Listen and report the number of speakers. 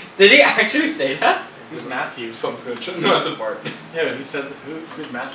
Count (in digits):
3